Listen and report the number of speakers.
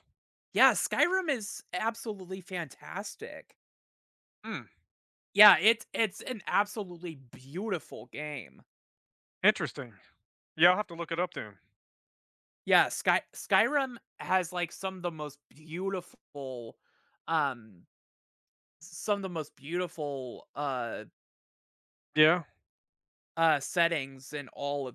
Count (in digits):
2